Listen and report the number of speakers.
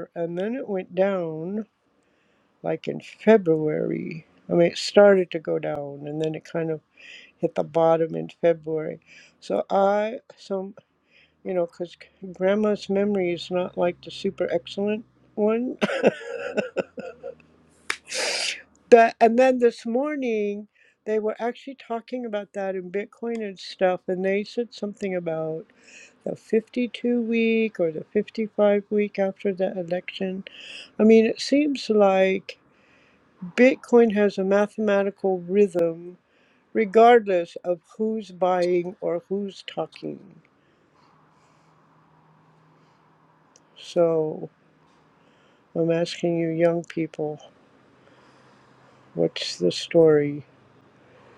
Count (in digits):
1